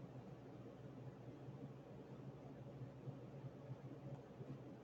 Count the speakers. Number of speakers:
0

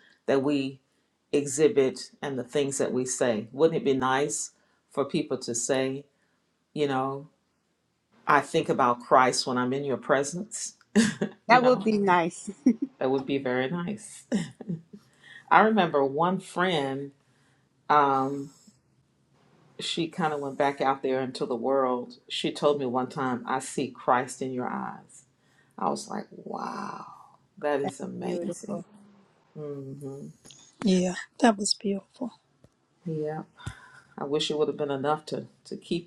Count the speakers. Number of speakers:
3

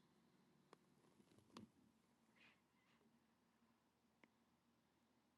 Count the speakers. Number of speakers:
0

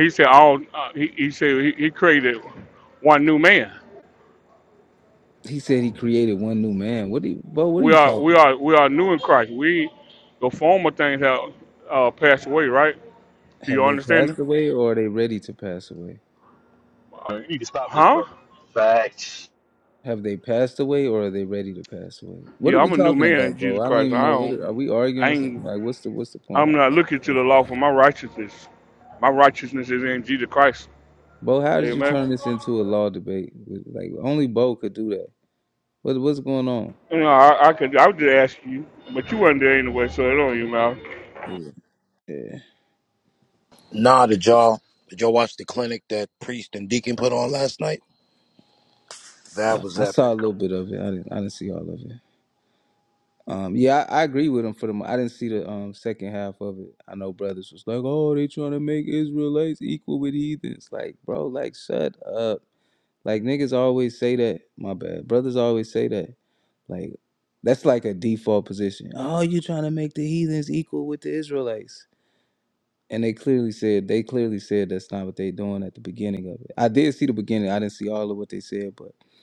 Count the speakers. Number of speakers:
4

